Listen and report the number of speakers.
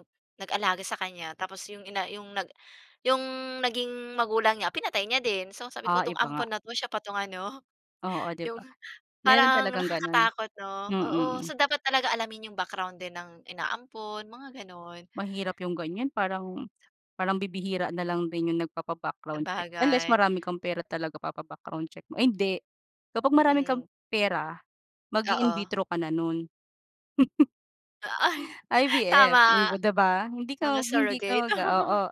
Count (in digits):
2